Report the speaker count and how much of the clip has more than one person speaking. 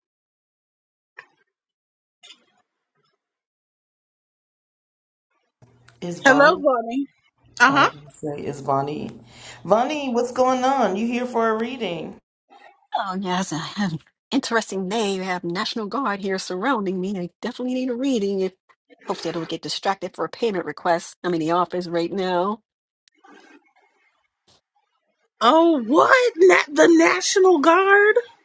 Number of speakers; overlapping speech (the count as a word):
three, about 2%